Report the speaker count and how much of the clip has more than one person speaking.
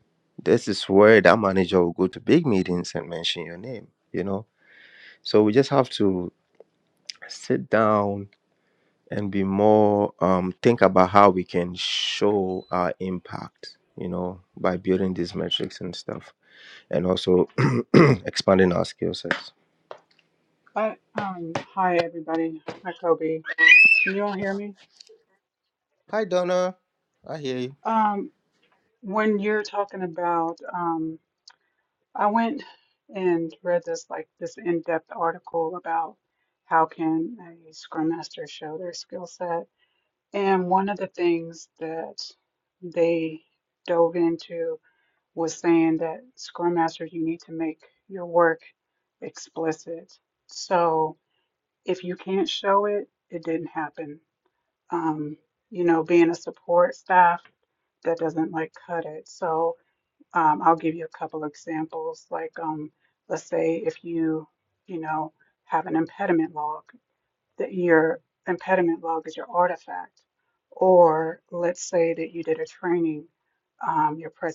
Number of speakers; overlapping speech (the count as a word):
two, no overlap